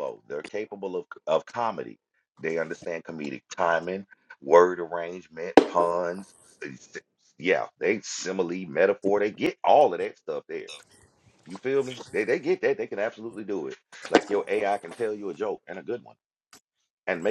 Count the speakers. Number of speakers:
1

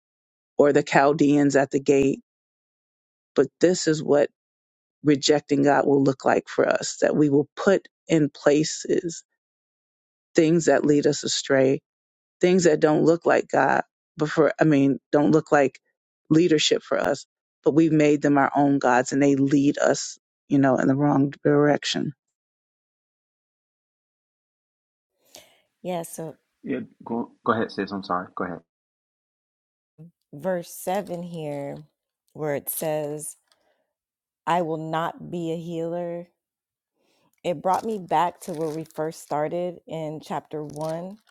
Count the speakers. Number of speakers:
3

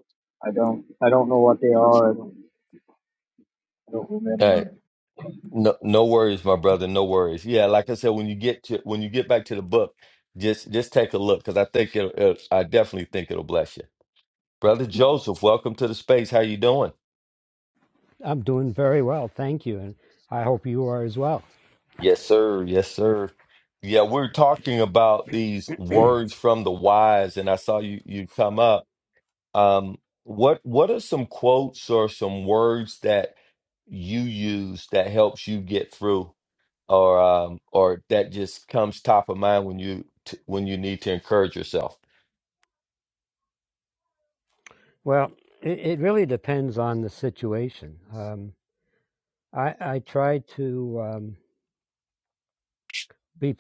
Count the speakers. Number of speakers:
3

